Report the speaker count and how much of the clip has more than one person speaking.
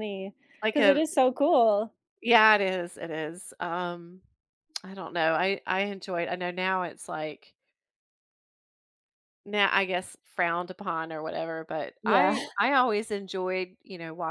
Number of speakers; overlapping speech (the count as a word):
two, about 5%